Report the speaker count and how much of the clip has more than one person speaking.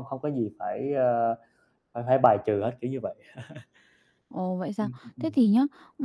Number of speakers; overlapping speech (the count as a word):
two, about 9%